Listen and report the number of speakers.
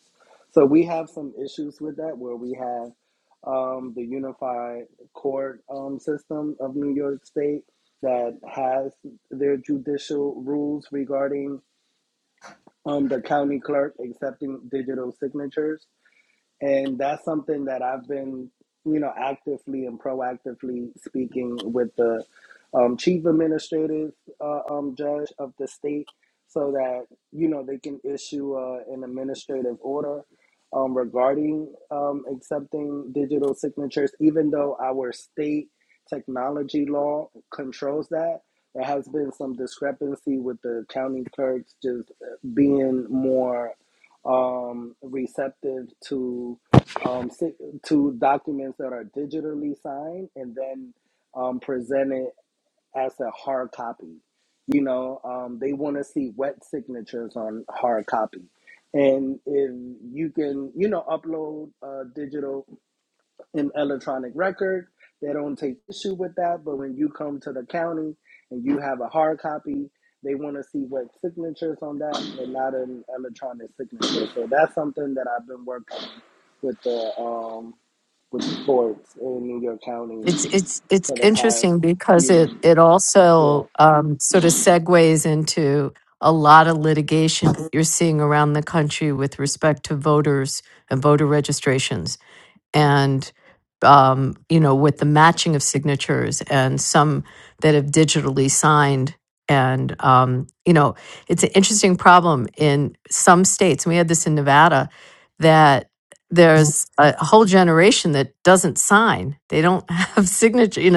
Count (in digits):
2